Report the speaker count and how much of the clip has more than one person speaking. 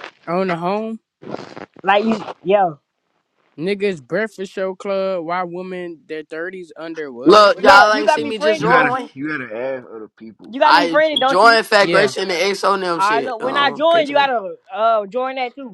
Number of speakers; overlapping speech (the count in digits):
4, about 25%